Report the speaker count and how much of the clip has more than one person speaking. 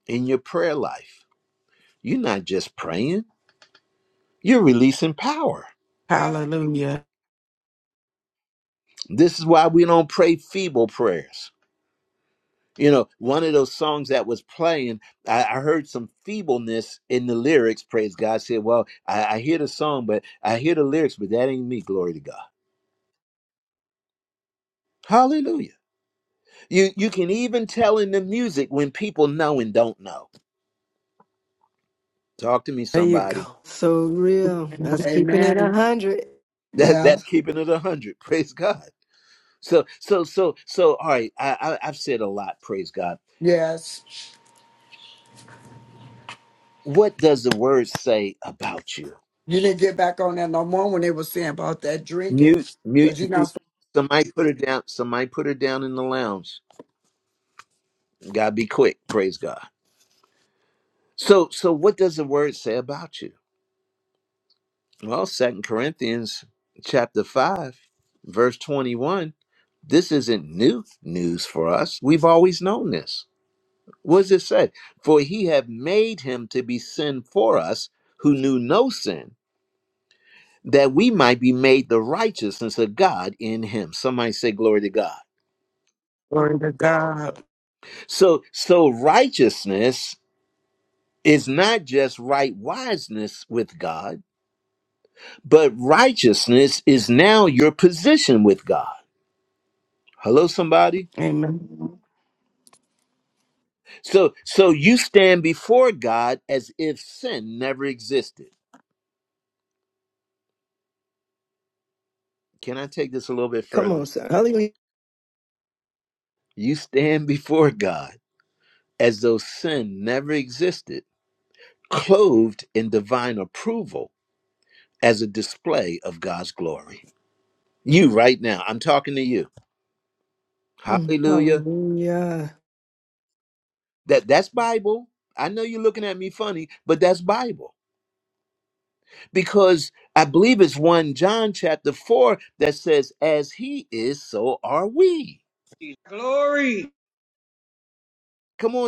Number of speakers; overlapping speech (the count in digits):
5, about 3%